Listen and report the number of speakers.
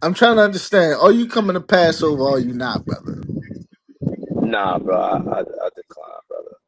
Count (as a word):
two